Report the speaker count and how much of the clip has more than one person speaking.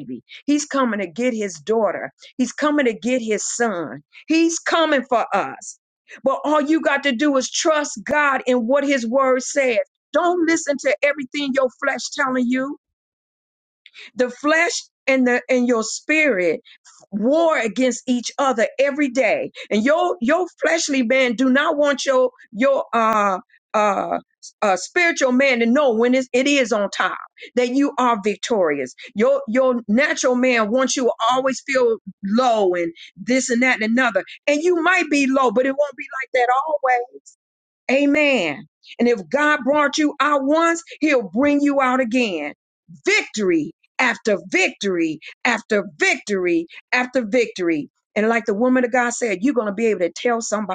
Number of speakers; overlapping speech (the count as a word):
one, no overlap